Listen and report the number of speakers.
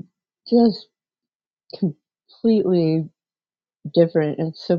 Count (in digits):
1